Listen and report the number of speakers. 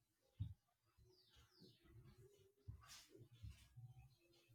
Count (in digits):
0